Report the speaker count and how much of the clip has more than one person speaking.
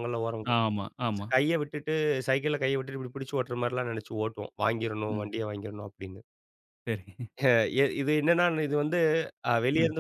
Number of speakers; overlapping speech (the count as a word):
two, about 3%